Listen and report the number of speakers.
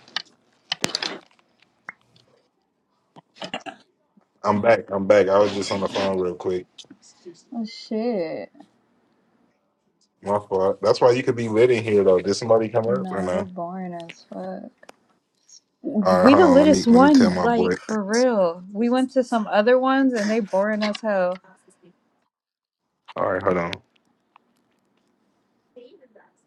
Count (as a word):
two